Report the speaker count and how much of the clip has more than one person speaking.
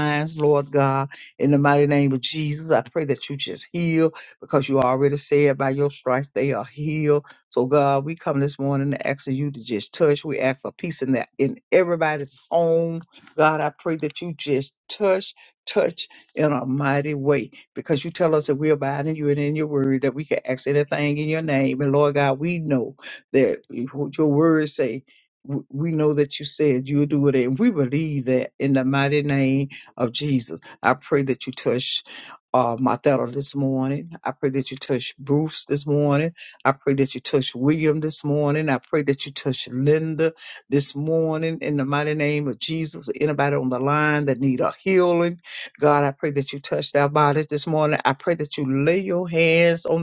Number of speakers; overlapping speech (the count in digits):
1, no overlap